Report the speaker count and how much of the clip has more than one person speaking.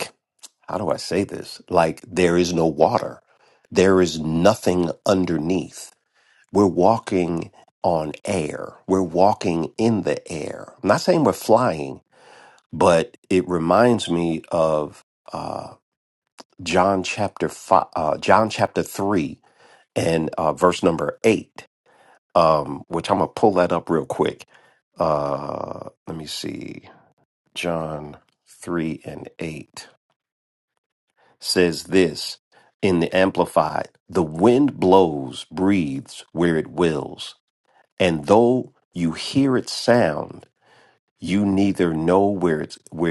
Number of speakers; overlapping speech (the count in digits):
1, no overlap